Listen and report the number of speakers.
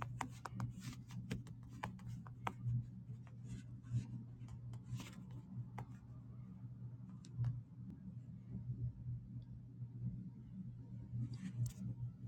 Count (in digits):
0